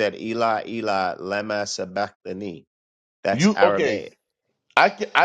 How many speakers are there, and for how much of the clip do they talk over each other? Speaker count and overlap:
two, about 13%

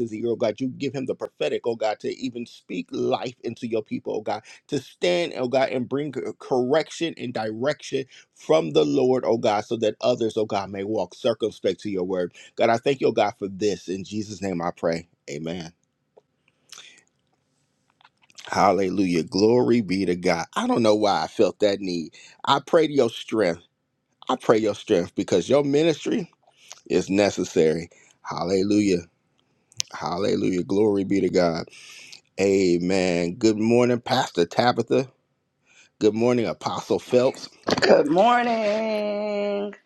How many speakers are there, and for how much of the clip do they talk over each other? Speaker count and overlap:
two, no overlap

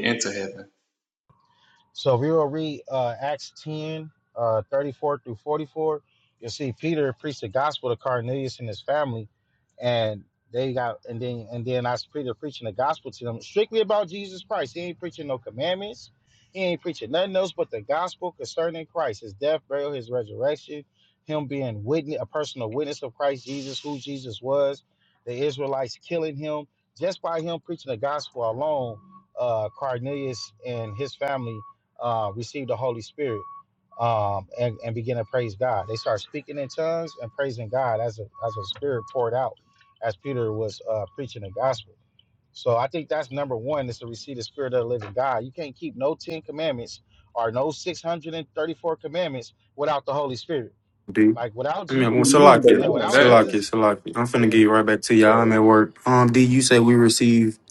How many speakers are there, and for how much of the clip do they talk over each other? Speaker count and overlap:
three, about 3%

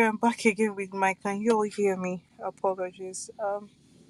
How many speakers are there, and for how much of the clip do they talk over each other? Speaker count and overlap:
one, no overlap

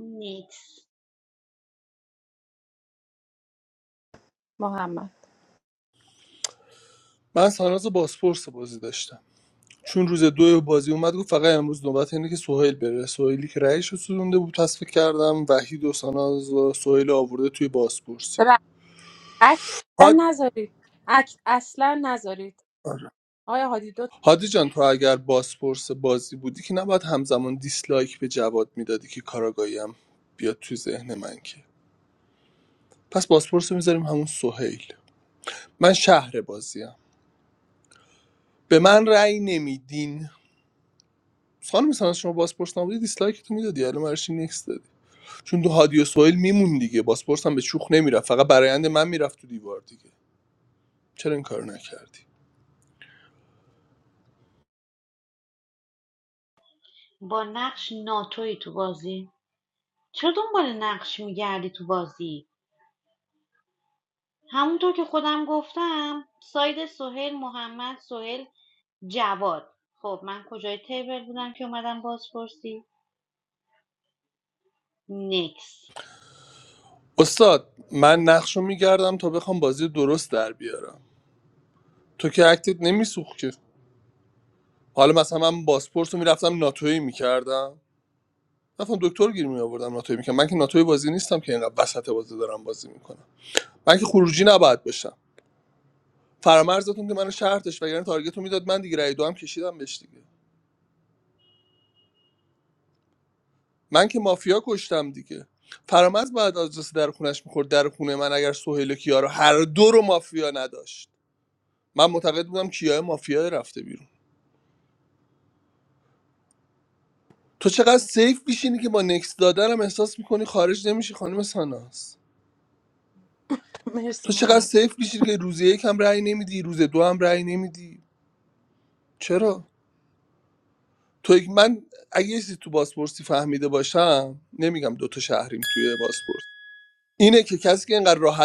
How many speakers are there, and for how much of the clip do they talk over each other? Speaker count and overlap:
three, under 1%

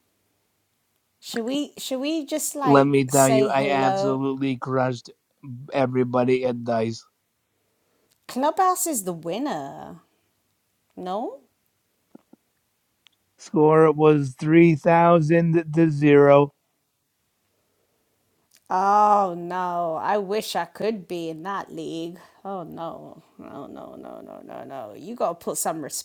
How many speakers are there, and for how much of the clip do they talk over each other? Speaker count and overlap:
two, about 6%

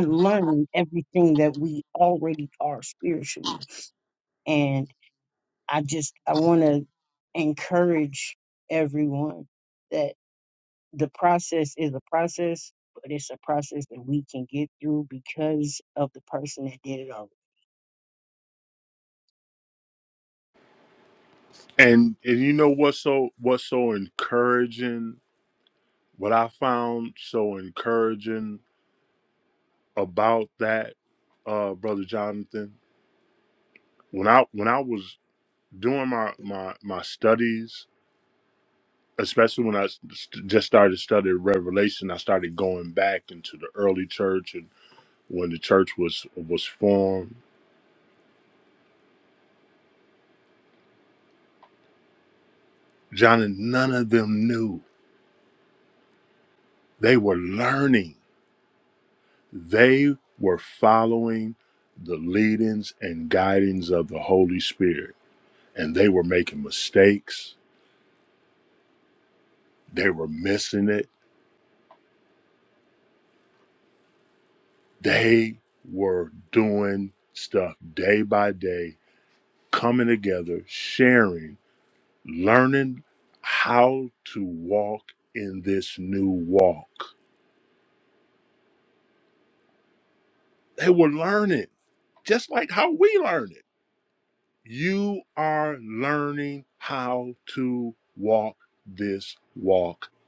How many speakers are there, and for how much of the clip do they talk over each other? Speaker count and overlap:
two, no overlap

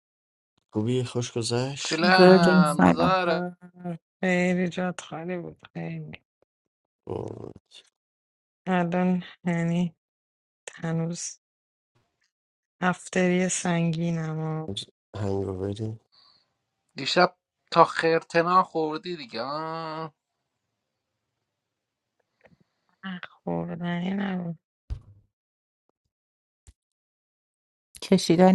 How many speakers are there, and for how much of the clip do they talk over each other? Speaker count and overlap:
four, about 4%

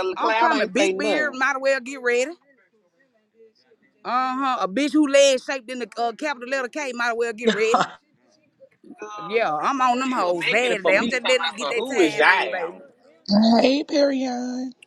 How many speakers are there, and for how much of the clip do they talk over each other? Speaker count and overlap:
three, about 28%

